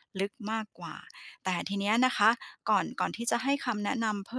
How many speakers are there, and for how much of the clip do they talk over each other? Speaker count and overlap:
1, no overlap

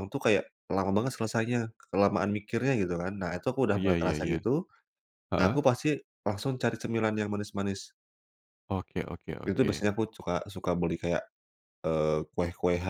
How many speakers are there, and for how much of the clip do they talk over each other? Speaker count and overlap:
2, about 9%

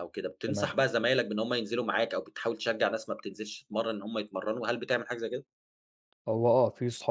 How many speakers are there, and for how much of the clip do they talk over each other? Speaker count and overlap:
2, about 3%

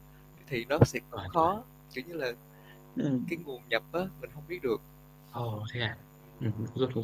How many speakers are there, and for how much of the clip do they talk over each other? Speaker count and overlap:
2, about 8%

